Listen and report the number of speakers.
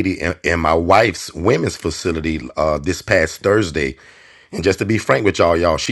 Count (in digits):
1